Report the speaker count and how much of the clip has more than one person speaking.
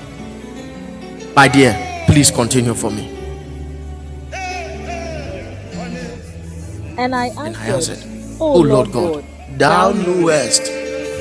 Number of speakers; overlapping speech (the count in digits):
2, about 11%